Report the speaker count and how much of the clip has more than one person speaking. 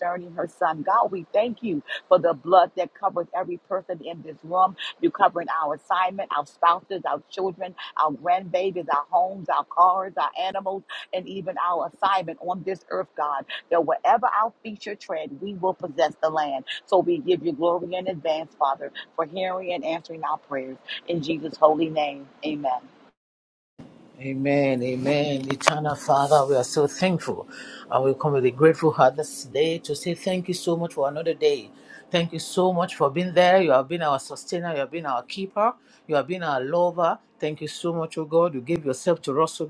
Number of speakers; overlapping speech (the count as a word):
two, no overlap